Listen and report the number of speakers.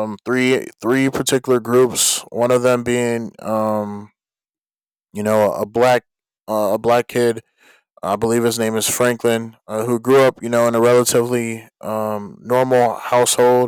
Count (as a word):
one